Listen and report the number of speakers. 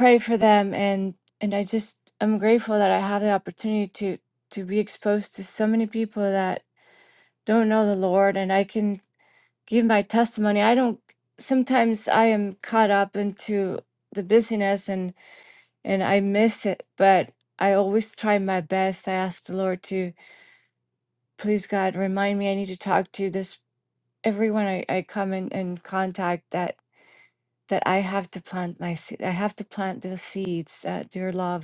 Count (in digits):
1